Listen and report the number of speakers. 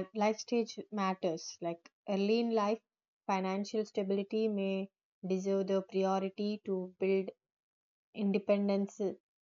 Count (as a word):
one